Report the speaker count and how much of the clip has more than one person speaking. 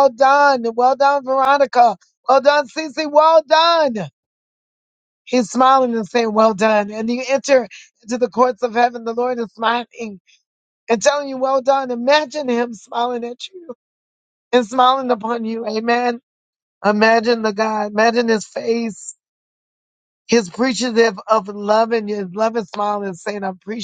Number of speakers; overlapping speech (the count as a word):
one, no overlap